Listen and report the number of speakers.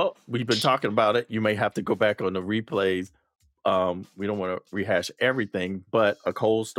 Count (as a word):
one